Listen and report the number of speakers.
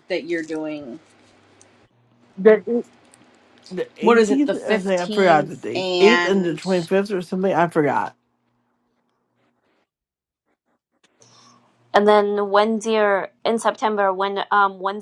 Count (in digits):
3